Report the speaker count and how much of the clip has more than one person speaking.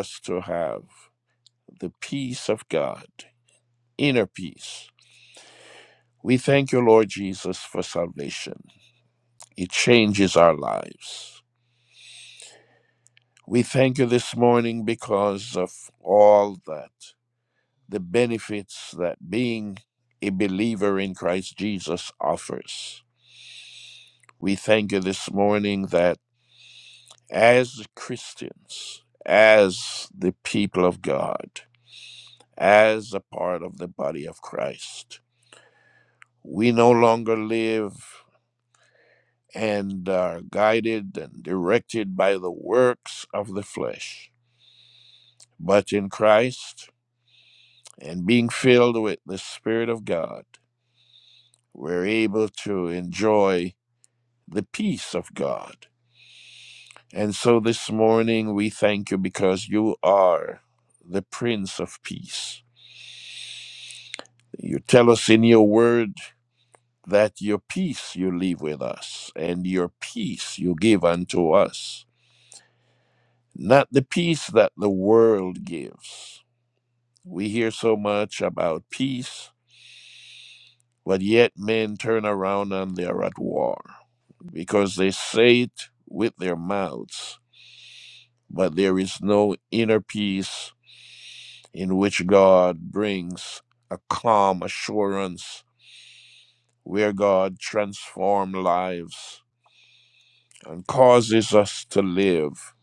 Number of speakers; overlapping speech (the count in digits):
1, no overlap